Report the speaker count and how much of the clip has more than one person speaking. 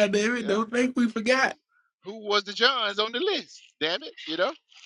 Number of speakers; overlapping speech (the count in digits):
2, about 7%